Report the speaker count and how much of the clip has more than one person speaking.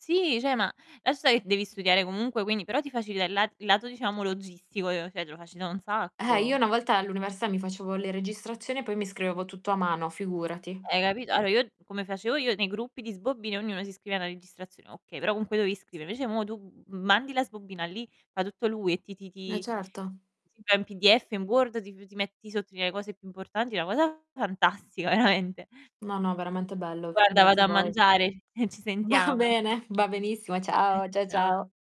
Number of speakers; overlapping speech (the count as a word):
two, about 8%